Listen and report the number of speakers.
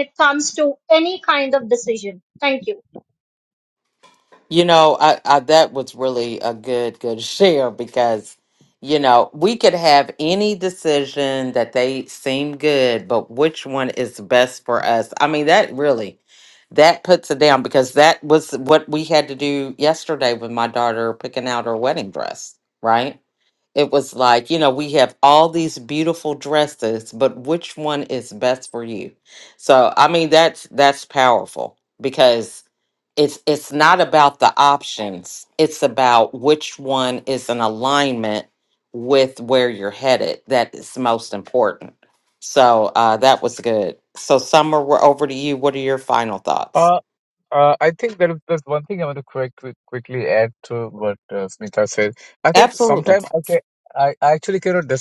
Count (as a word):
three